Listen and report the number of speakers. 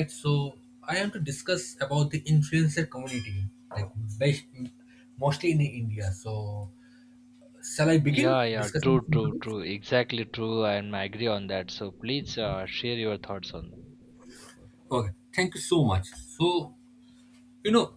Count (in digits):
2